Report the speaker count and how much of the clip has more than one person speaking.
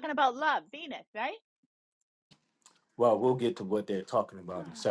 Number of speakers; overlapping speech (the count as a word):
two, no overlap